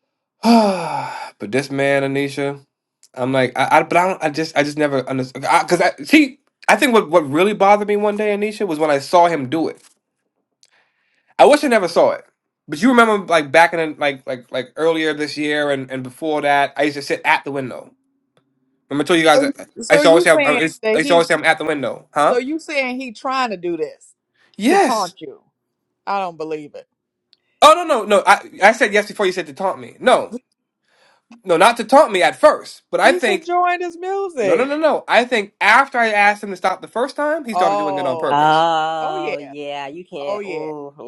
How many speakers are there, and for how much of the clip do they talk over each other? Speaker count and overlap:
3, about 11%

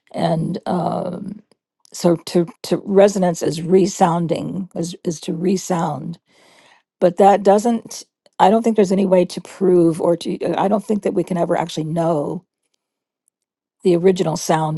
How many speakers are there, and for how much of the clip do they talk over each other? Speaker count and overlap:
1, no overlap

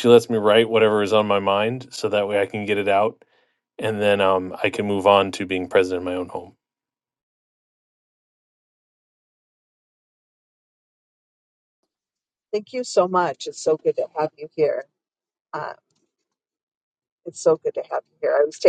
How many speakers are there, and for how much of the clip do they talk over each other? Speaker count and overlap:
2, no overlap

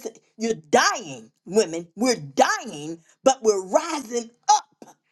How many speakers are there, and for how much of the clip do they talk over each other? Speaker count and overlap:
1, no overlap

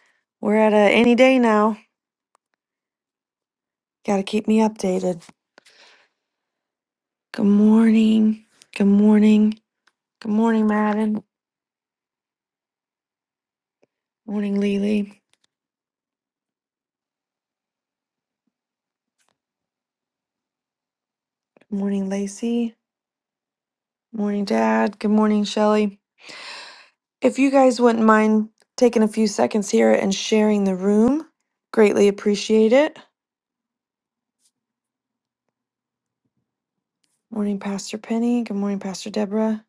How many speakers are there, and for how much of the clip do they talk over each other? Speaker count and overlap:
1, no overlap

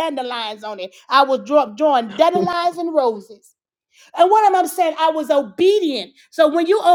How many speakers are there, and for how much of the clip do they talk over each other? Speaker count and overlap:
1, no overlap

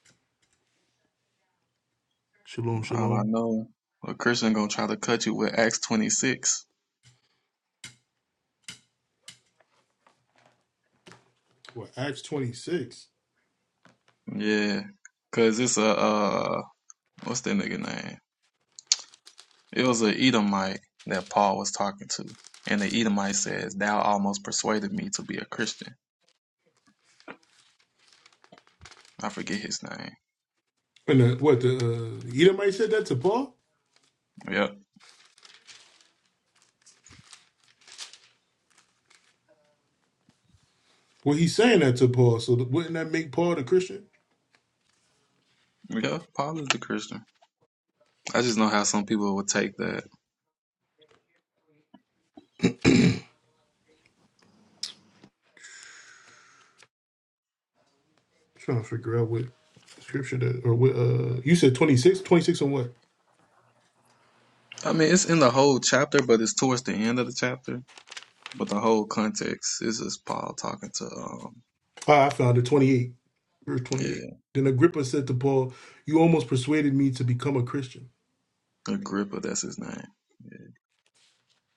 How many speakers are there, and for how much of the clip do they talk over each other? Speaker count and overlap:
2, about 1%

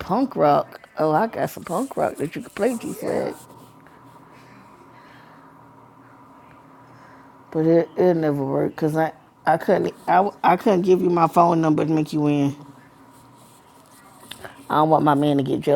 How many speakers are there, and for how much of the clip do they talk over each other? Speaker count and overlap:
1, no overlap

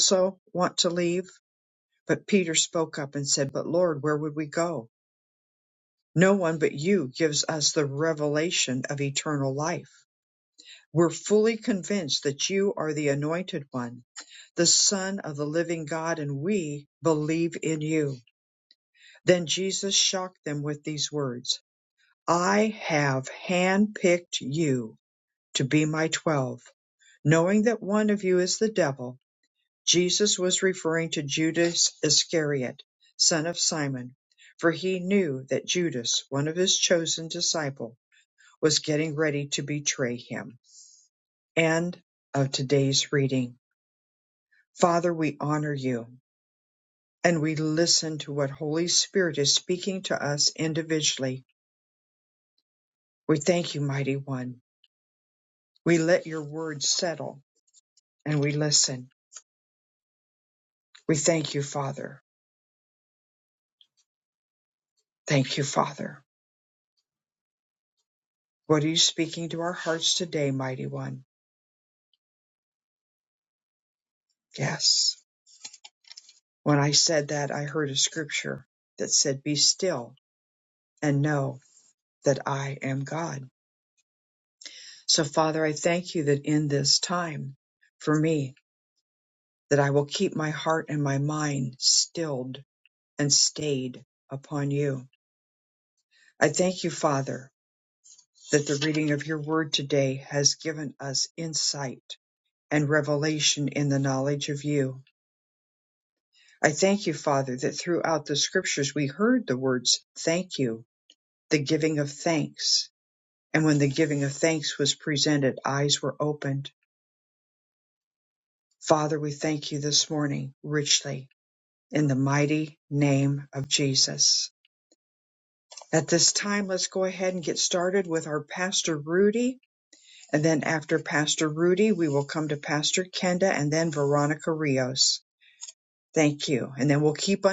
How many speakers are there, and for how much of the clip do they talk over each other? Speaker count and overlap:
1, no overlap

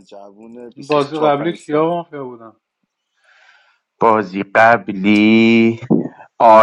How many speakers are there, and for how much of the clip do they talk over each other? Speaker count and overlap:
3, about 16%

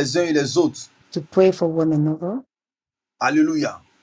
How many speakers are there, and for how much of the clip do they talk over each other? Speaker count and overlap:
2, no overlap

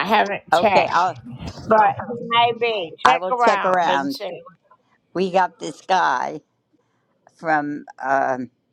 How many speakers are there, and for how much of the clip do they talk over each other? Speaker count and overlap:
2, about 18%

